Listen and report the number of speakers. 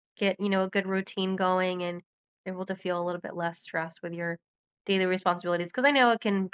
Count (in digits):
1